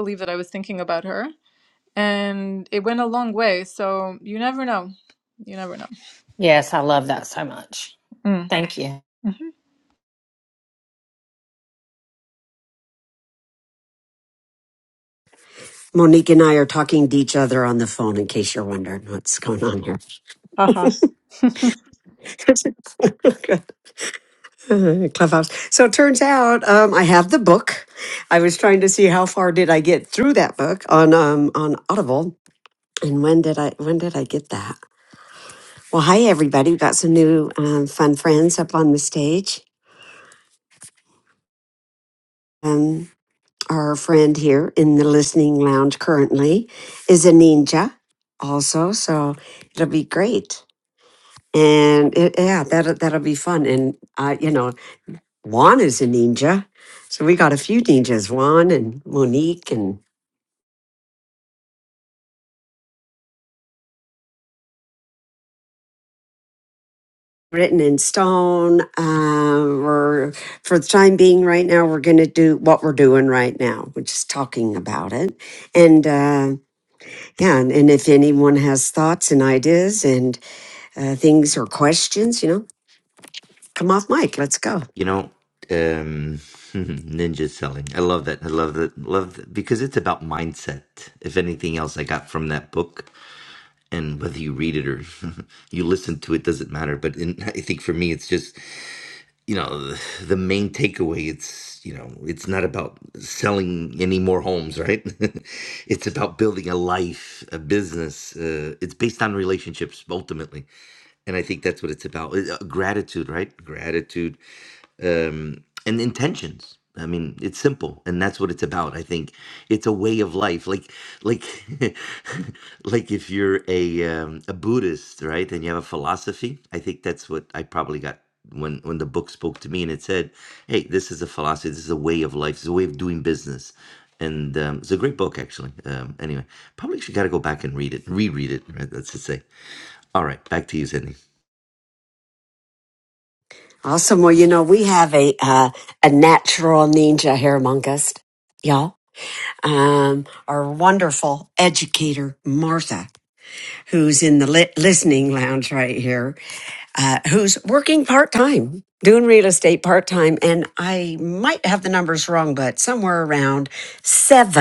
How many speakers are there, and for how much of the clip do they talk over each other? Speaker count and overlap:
four, no overlap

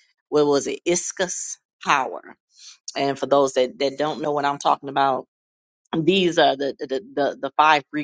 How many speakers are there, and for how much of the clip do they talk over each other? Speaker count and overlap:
one, no overlap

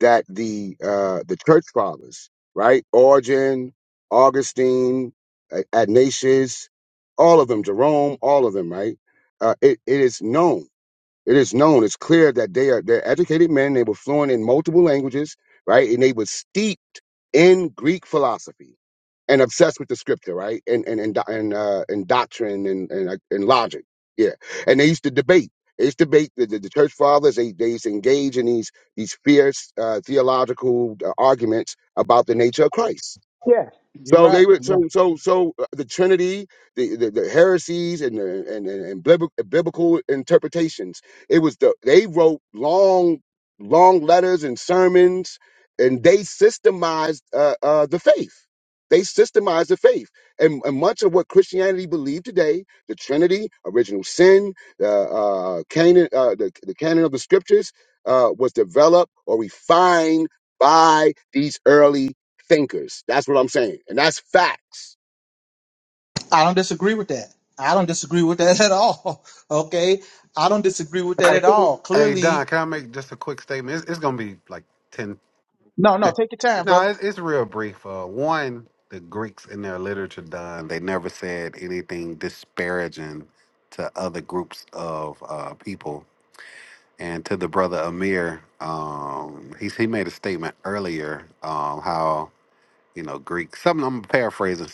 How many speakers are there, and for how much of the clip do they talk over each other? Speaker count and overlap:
three, about 2%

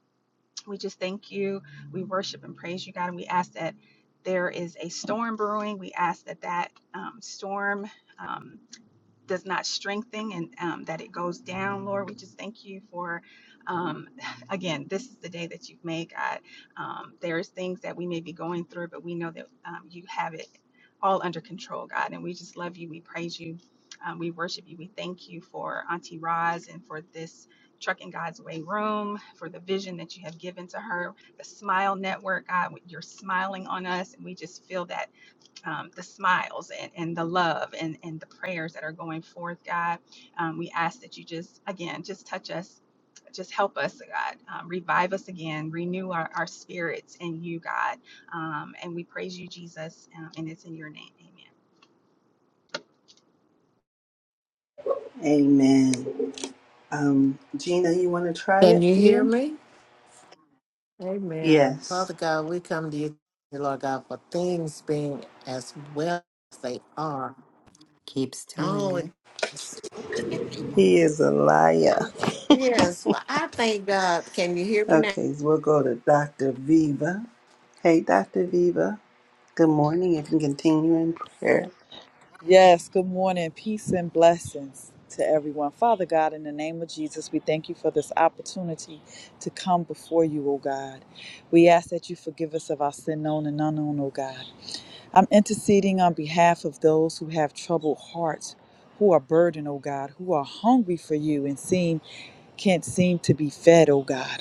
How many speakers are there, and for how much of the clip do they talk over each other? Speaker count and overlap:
five, about 2%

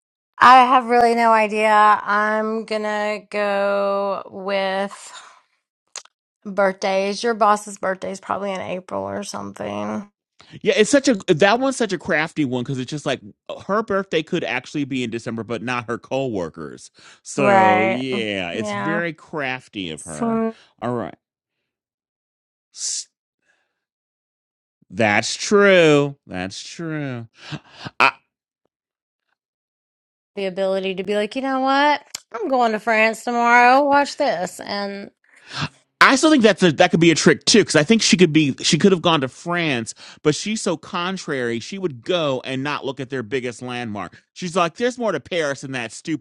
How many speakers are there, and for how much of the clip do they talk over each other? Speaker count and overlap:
two, about 3%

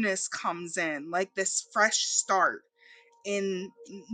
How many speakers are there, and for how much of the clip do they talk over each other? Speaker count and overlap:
one, no overlap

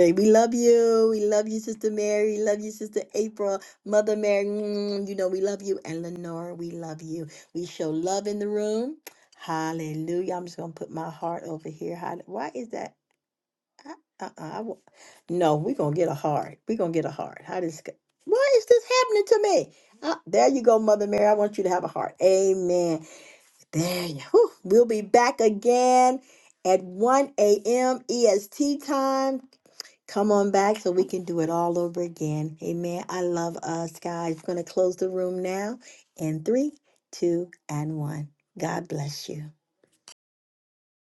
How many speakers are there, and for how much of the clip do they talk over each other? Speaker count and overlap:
one, no overlap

